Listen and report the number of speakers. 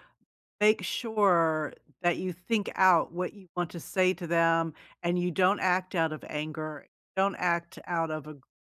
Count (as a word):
one